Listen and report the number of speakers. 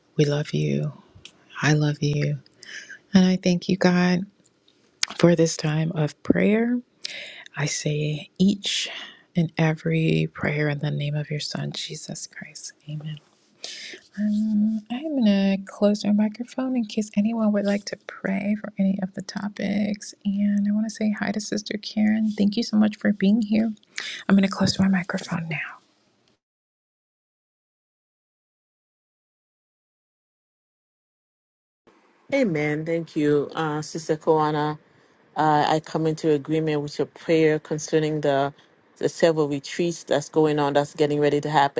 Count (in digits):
2